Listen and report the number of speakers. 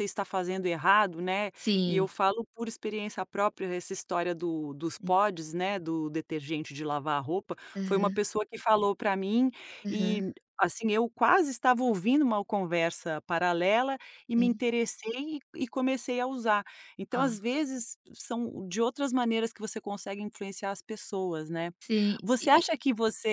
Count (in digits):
2